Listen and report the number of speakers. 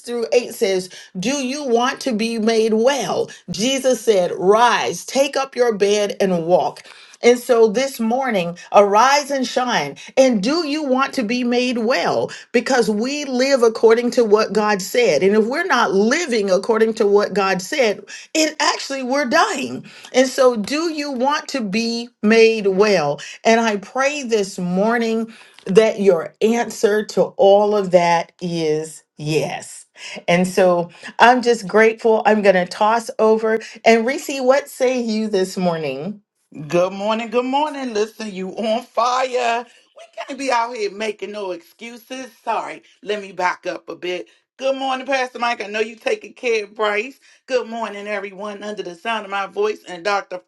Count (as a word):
two